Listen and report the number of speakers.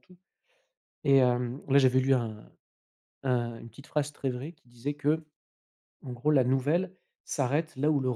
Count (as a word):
one